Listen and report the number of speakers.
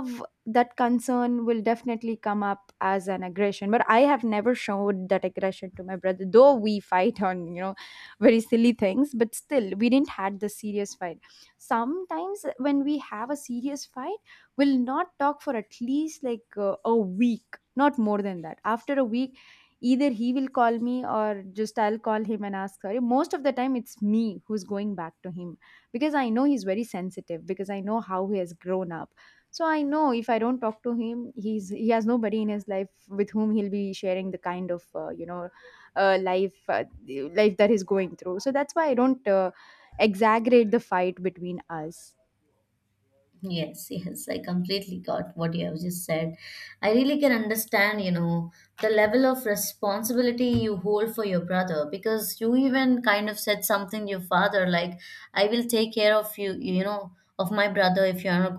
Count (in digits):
2